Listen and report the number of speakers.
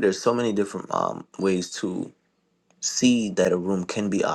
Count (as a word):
one